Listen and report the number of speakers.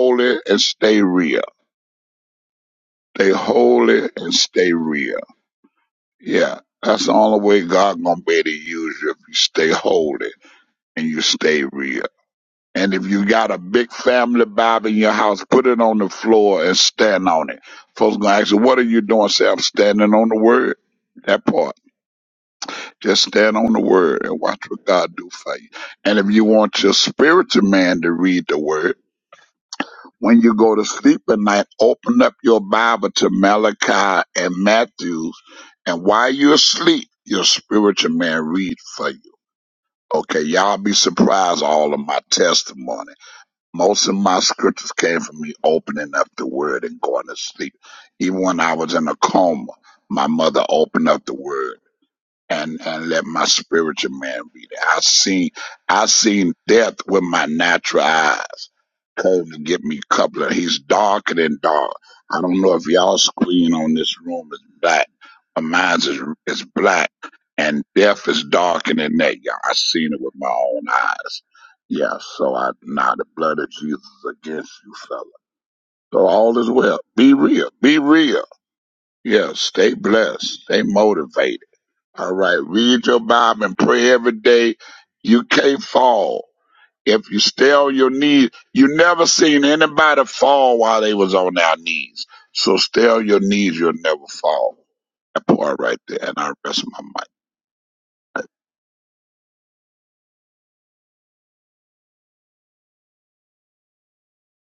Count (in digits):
1